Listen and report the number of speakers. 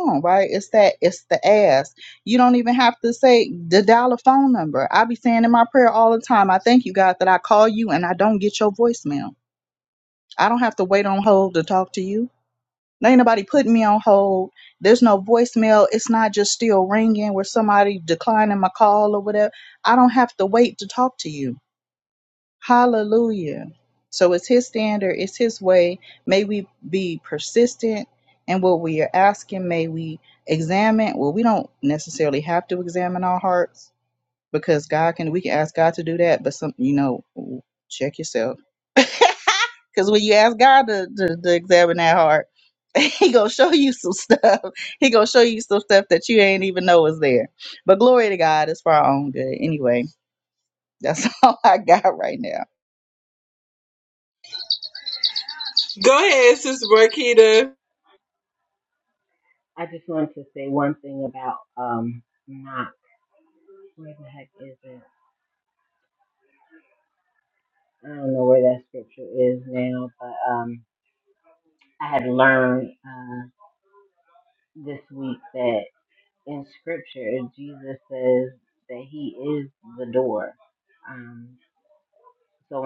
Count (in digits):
3